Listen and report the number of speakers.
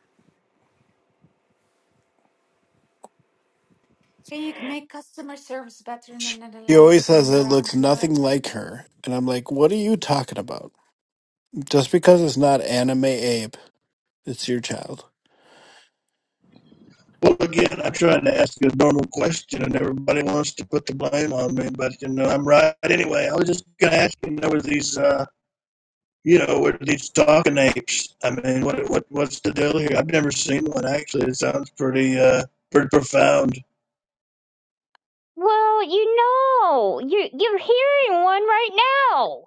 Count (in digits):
4